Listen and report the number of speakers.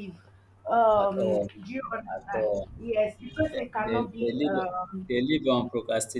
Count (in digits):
2